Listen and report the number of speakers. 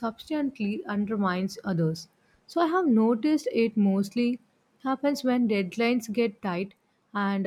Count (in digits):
1